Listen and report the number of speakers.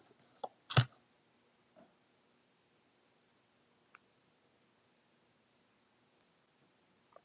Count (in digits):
0